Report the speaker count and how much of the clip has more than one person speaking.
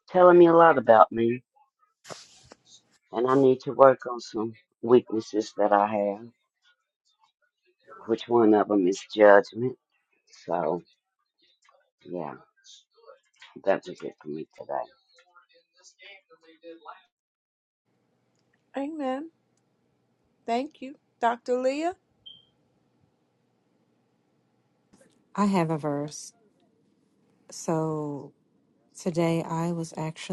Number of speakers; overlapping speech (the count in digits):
3, no overlap